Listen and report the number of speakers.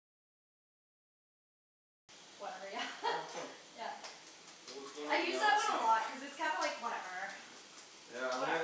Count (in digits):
3